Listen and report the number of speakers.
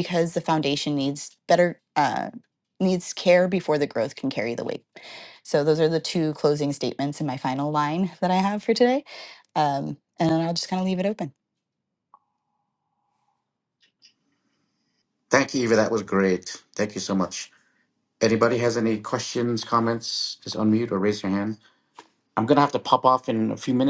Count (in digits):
2